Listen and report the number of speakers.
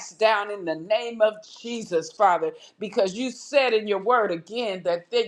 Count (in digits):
1